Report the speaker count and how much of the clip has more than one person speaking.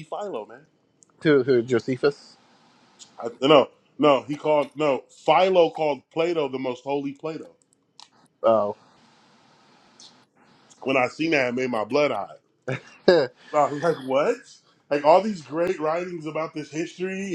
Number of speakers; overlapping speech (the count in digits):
2, no overlap